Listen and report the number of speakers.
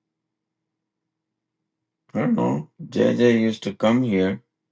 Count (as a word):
one